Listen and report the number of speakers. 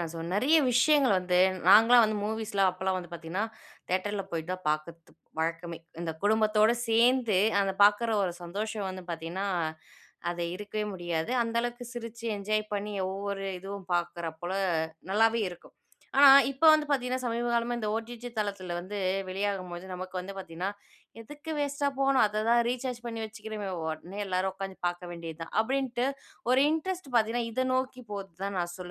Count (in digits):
1